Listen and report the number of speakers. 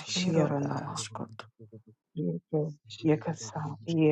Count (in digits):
2